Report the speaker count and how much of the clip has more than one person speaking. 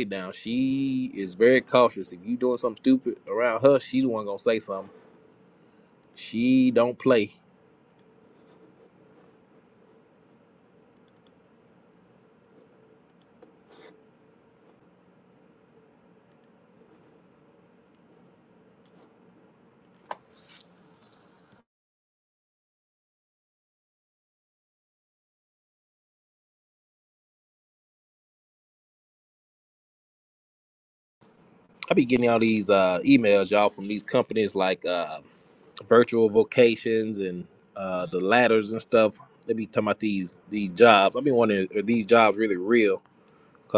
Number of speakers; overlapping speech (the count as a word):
one, no overlap